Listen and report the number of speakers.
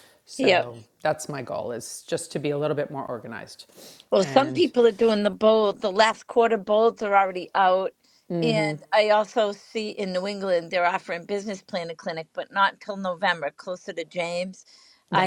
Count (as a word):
two